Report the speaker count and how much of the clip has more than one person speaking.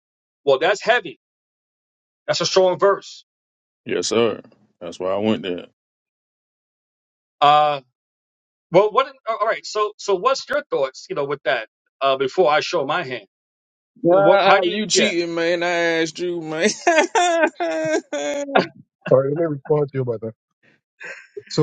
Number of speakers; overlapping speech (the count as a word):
three, about 5%